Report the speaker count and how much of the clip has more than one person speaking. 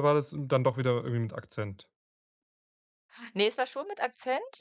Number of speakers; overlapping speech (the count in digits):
2, no overlap